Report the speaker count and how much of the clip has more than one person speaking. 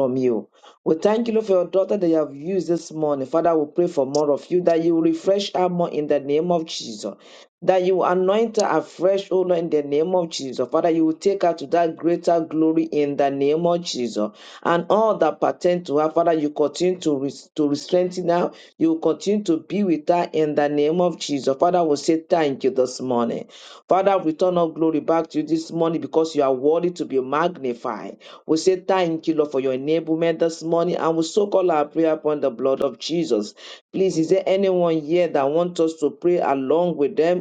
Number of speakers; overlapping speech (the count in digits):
1, no overlap